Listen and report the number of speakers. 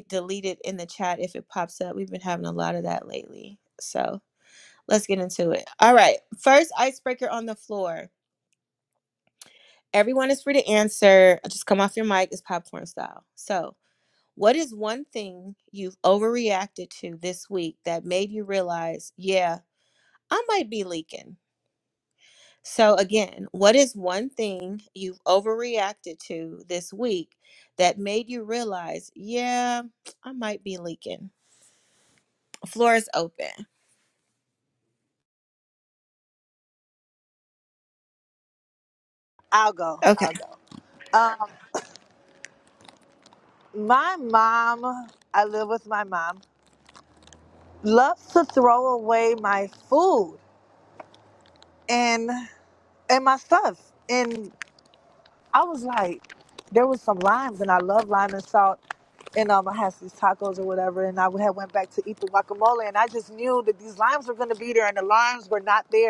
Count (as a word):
two